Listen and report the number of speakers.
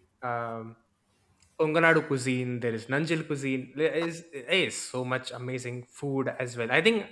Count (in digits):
1